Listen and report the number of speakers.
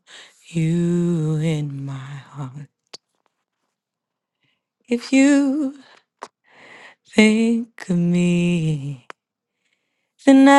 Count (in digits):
1